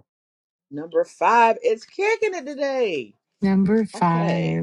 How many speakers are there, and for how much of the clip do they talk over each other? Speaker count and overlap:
two, about 13%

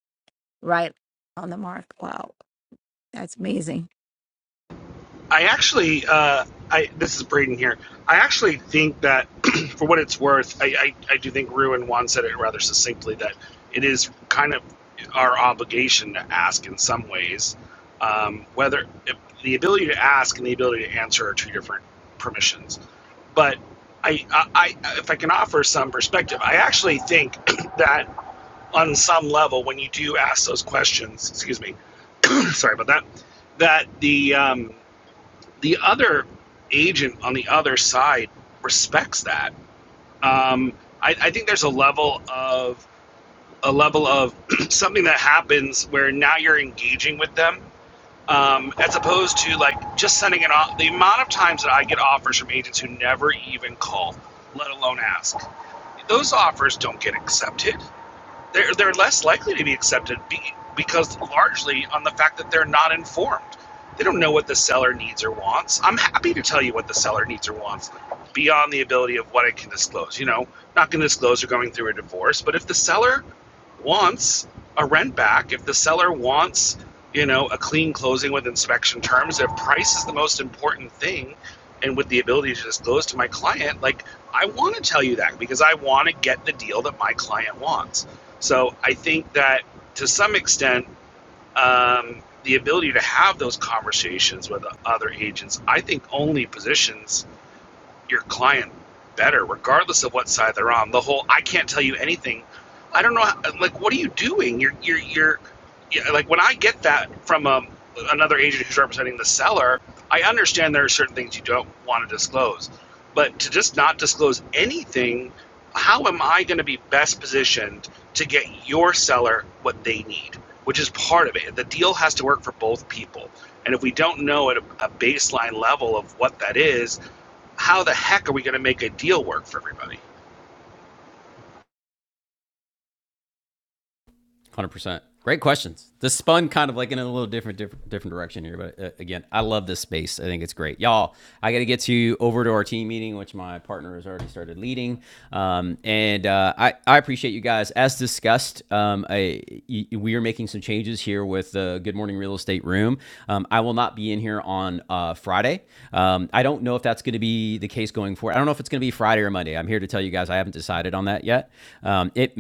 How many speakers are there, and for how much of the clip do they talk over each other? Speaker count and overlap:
three, no overlap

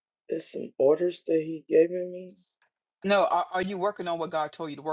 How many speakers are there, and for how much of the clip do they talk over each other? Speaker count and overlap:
two, no overlap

